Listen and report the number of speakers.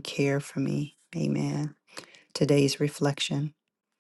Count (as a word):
one